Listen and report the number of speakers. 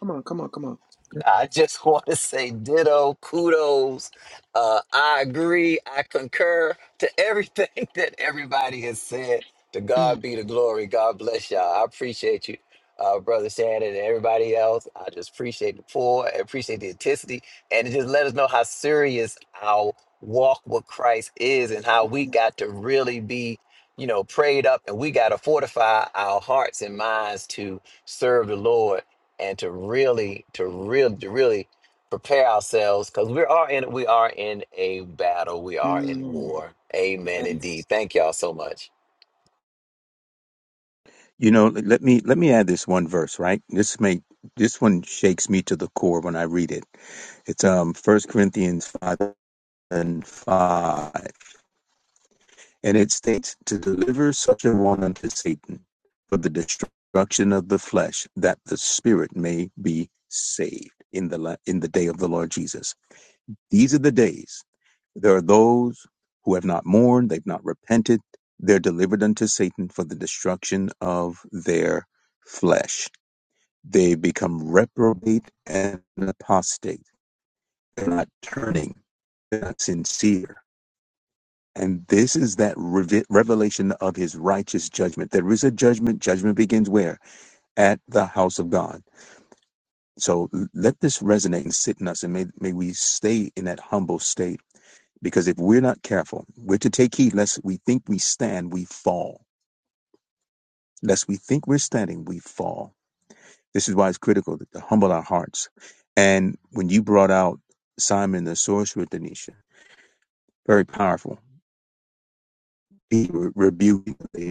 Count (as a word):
three